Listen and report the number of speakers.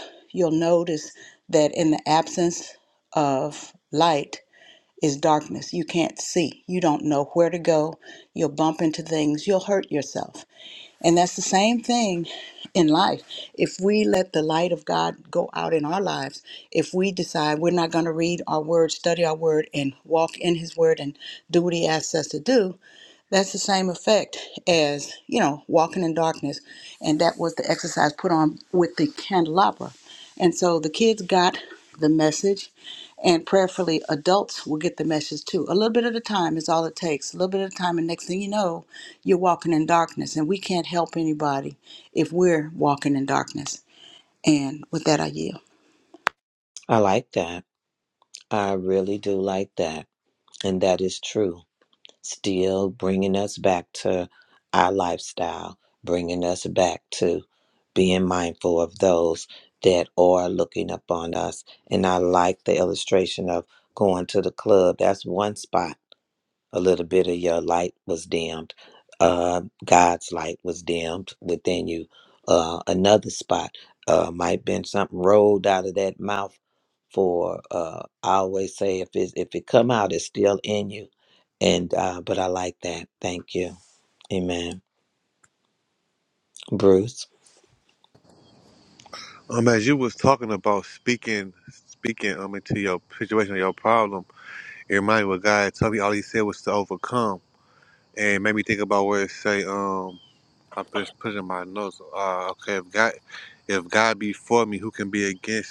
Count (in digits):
3